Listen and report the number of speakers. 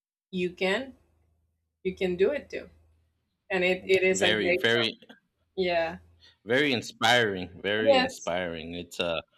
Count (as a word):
two